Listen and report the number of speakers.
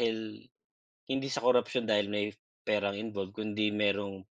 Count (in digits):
1